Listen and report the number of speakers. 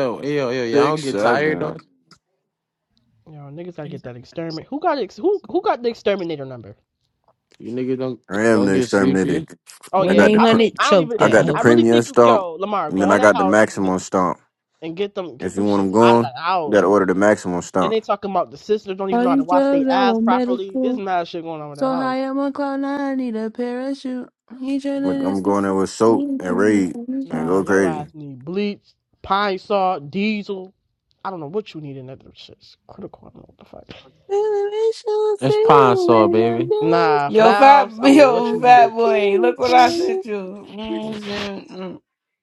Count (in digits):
5